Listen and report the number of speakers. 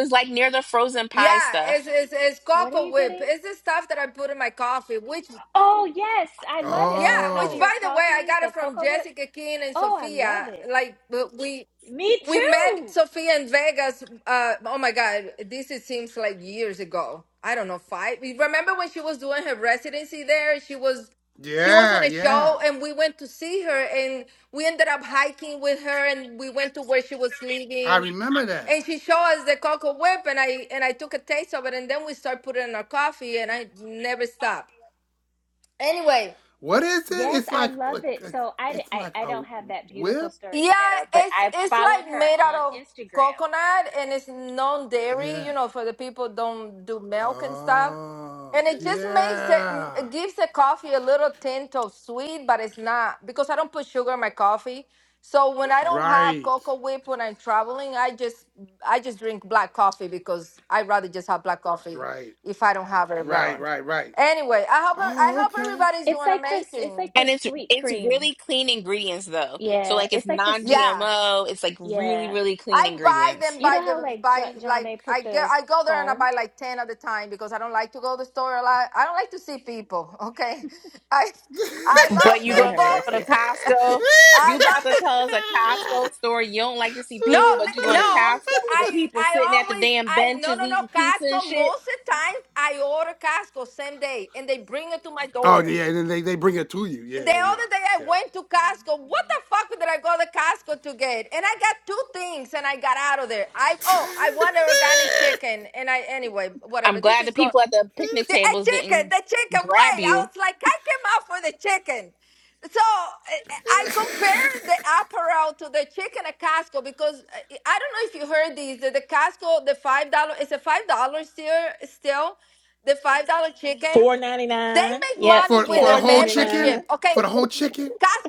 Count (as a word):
five